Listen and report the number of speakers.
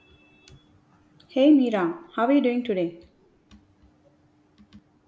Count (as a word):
one